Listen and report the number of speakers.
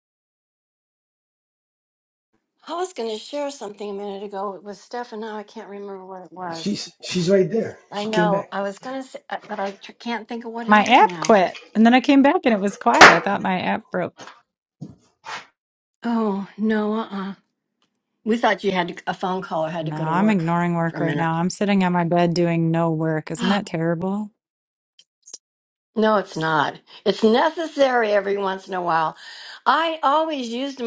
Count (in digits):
3